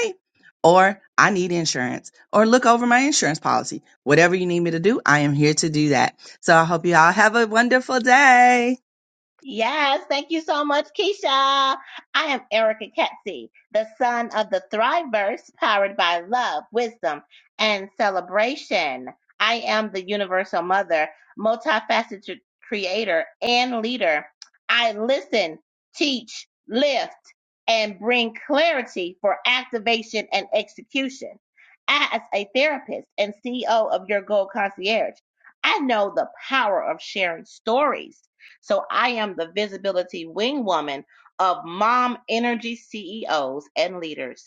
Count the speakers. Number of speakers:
2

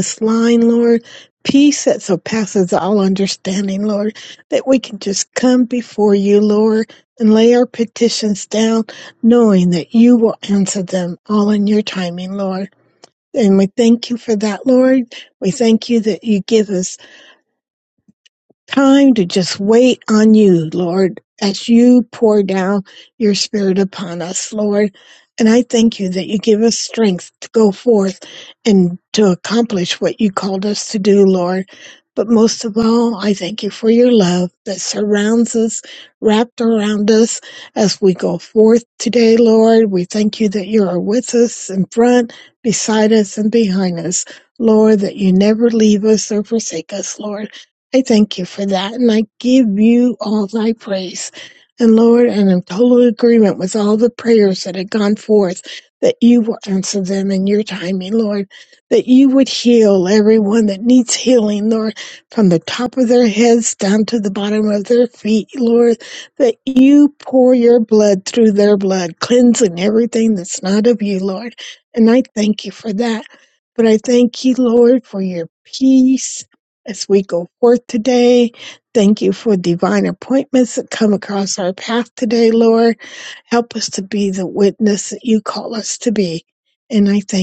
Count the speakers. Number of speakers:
1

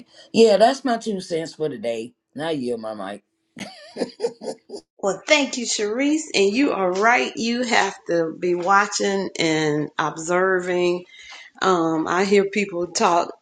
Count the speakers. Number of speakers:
2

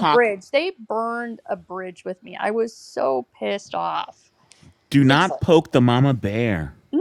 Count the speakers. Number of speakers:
2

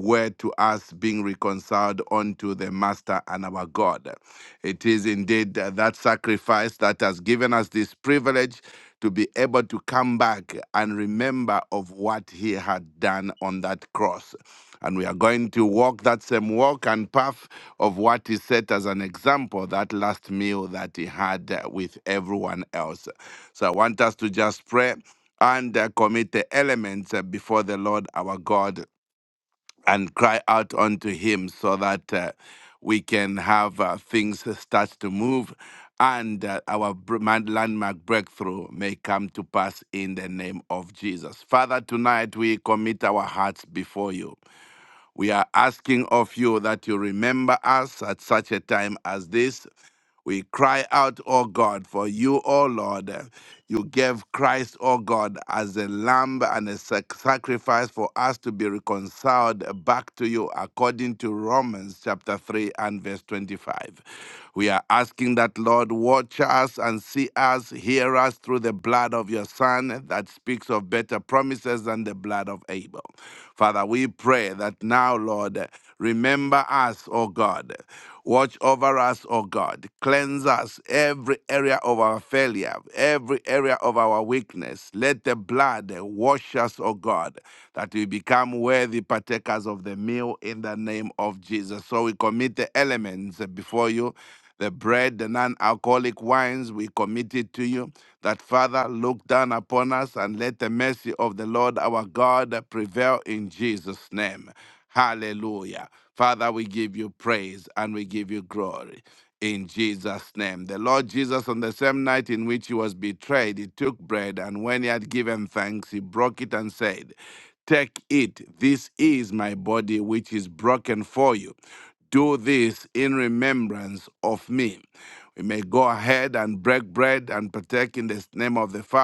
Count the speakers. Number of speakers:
1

